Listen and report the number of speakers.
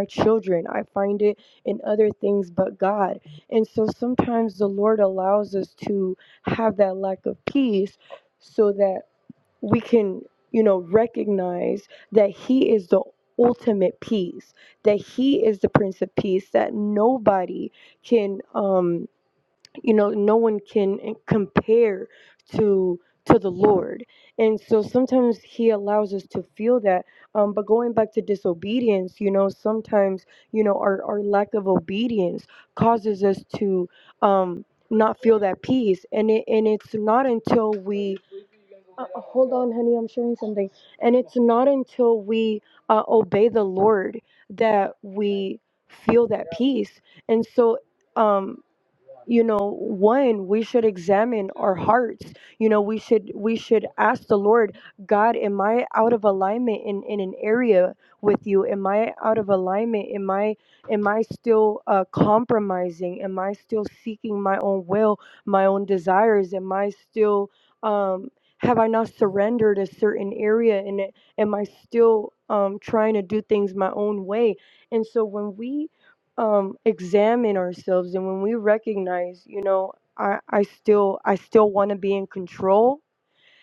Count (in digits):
1